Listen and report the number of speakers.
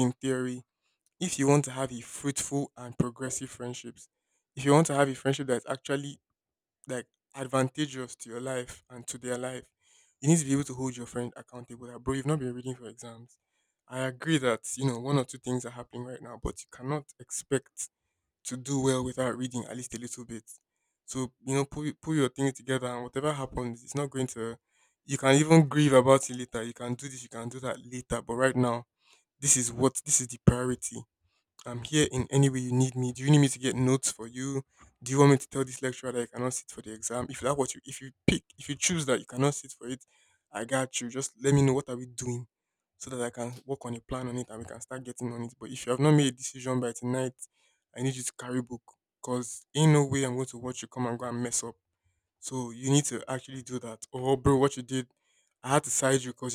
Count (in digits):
1